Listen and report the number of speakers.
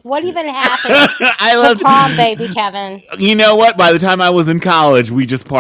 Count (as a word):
two